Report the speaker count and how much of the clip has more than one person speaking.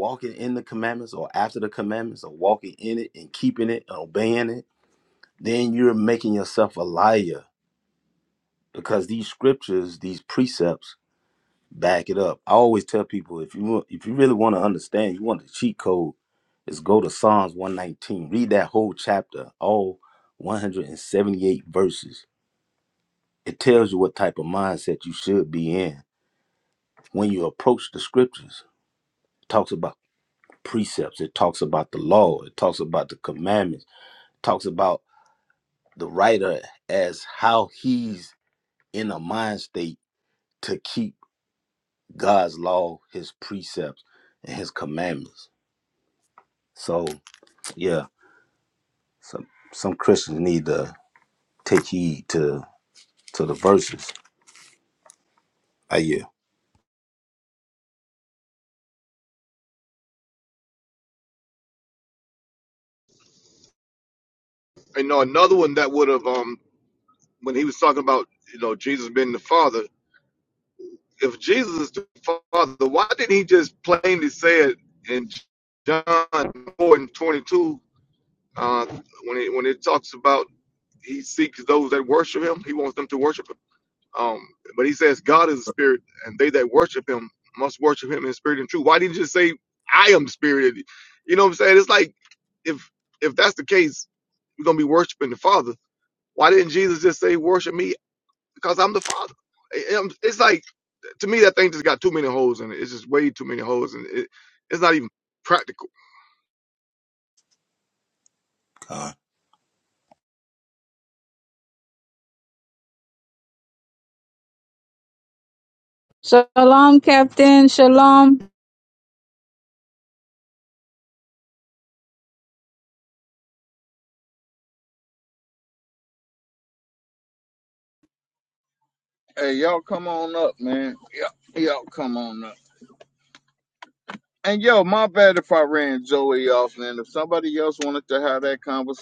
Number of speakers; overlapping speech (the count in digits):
4, no overlap